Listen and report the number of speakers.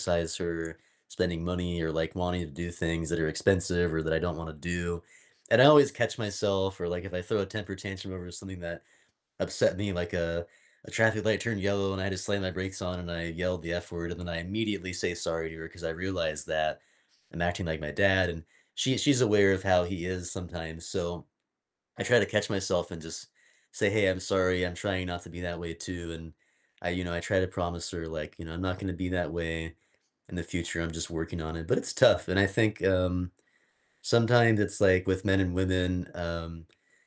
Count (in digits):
1